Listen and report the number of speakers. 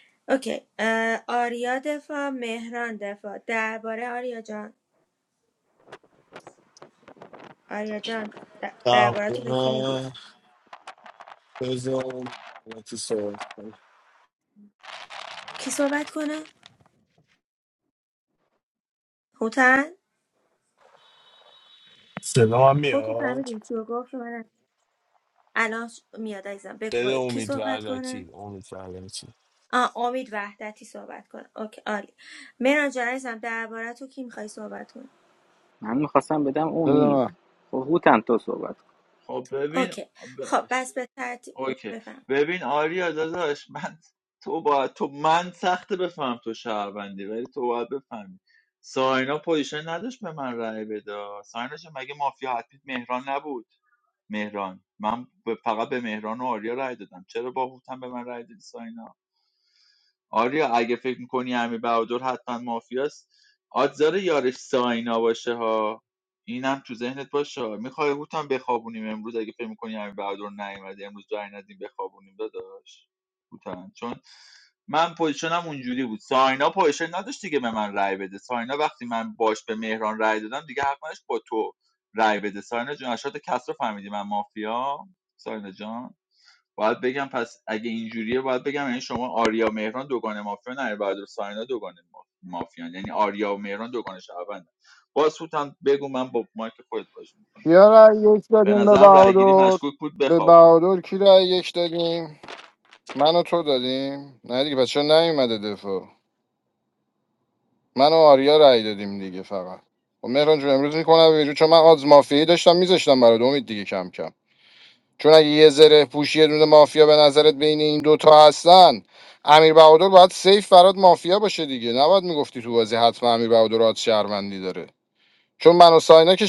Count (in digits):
5